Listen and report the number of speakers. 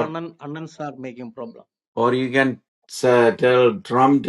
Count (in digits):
2